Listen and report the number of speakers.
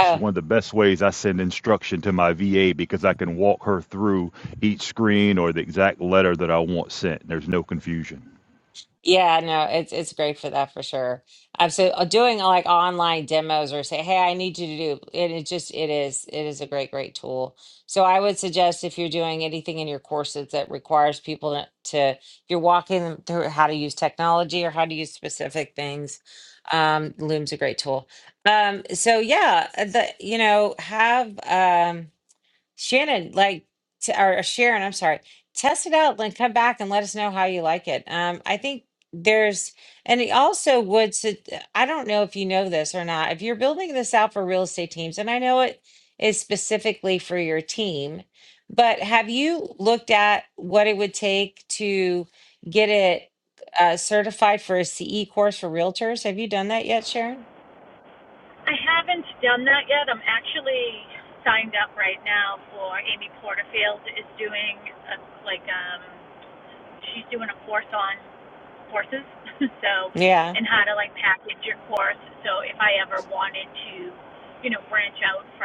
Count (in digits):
3